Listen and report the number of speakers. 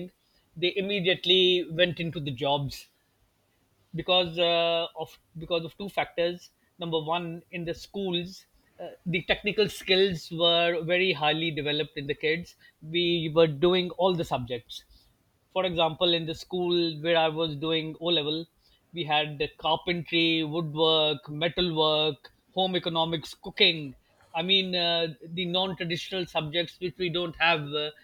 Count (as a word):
one